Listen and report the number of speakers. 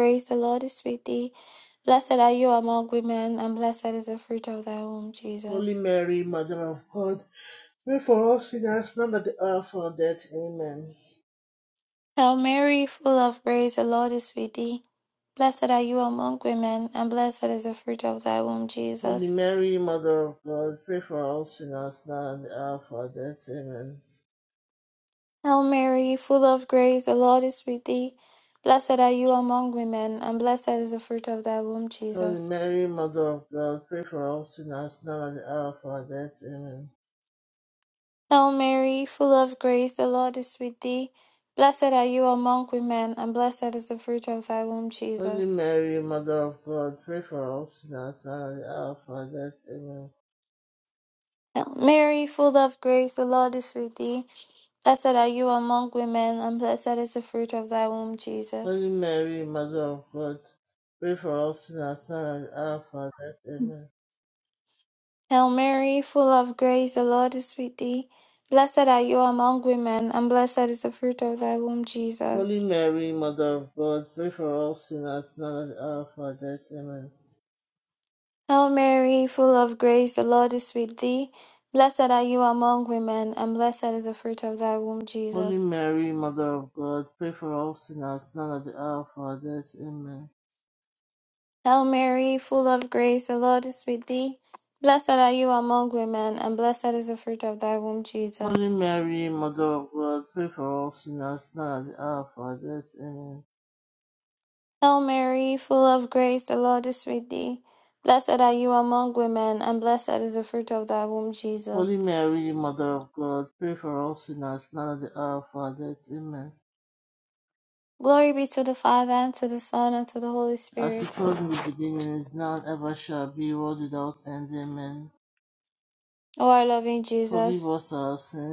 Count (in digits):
2